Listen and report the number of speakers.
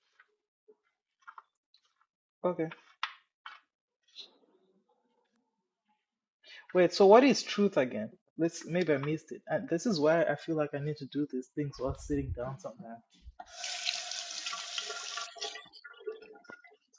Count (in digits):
1